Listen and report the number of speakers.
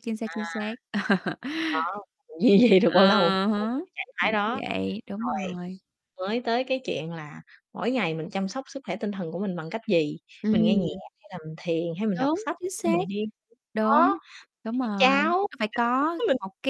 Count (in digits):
2